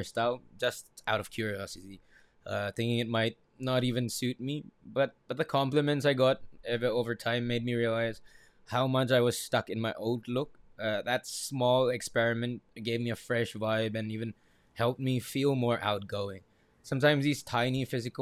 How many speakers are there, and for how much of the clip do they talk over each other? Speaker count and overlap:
1, no overlap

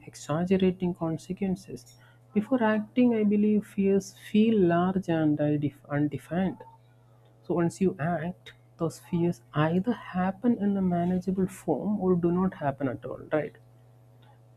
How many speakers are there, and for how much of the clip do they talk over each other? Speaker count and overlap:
1, no overlap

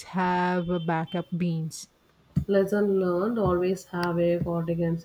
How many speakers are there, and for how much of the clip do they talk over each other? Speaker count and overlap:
2, no overlap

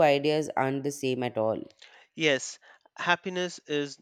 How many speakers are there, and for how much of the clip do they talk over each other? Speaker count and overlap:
2, no overlap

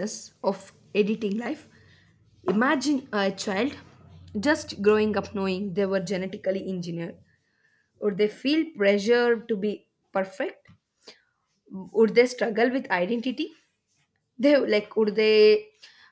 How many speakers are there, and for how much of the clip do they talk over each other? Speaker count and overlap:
1, no overlap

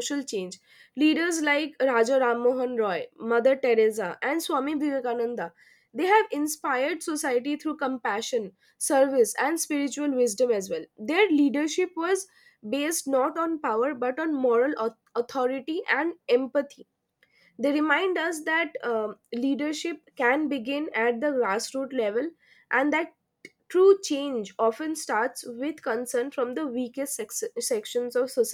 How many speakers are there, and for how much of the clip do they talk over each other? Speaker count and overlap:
1, no overlap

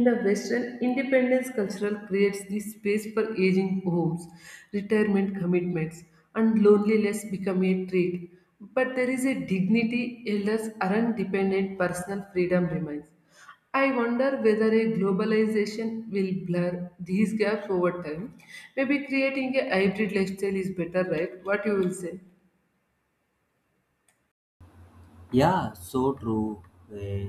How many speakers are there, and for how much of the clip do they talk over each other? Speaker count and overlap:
2, no overlap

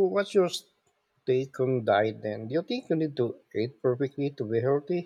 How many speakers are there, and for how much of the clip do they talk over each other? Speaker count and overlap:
1, no overlap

